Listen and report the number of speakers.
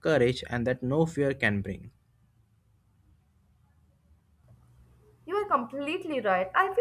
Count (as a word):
two